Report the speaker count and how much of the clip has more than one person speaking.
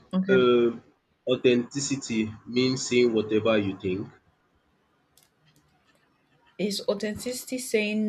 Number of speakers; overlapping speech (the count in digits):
2, about 1%